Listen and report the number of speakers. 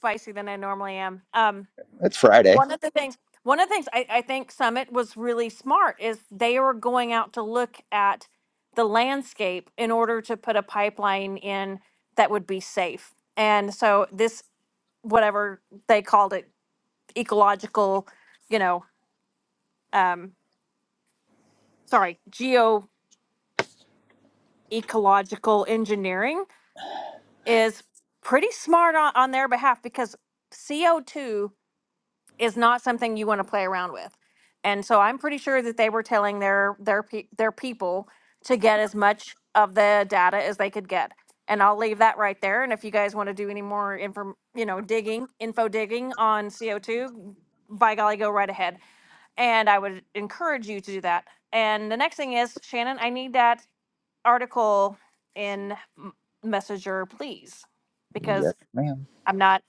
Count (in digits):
2